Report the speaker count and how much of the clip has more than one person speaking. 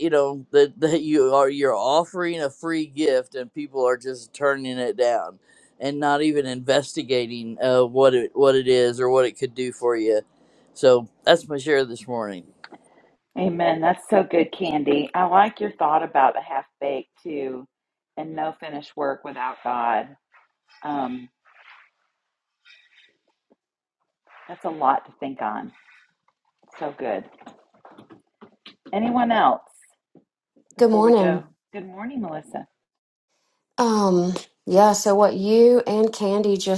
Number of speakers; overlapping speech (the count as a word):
three, about 2%